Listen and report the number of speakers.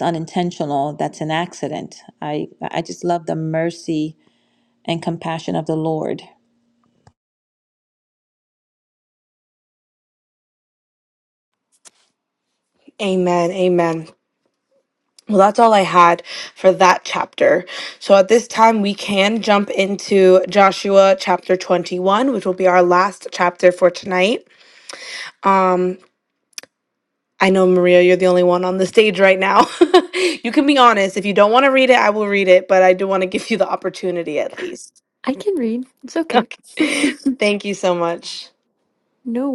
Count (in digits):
3